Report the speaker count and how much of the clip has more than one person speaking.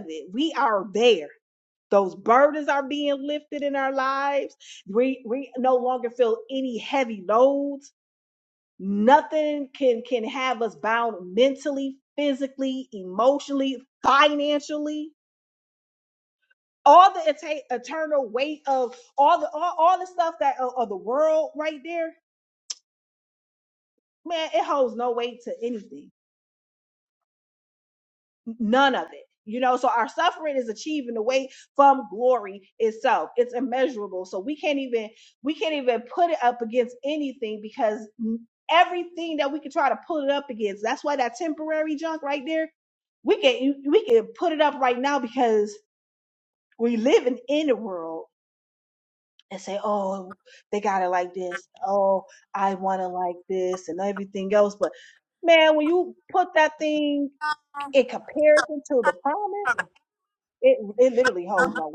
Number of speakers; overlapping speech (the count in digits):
1, no overlap